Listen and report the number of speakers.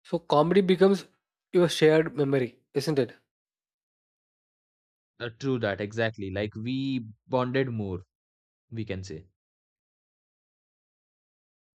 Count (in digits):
2